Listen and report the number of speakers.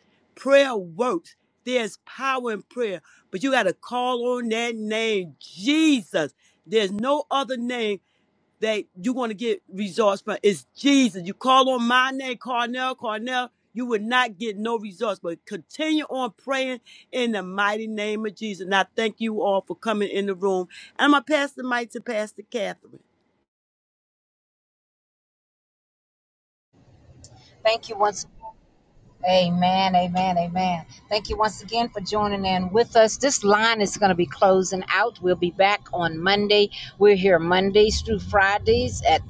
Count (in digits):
2